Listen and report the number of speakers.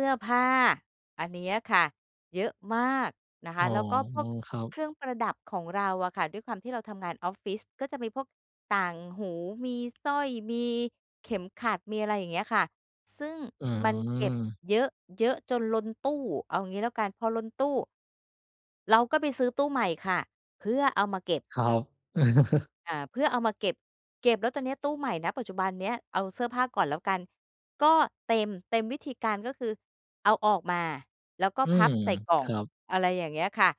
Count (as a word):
two